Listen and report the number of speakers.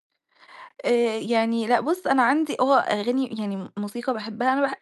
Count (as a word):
one